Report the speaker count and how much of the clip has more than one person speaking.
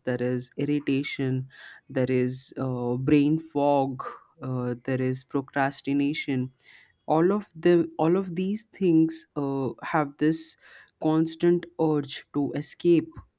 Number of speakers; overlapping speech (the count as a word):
one, no overlap